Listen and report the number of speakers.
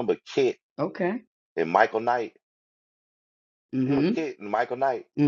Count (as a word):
two